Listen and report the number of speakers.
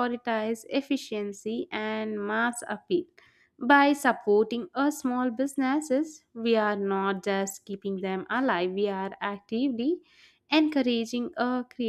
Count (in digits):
1